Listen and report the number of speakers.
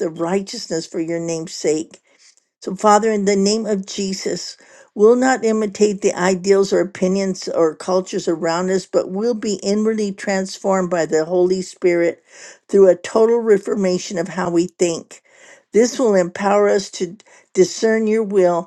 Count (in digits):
1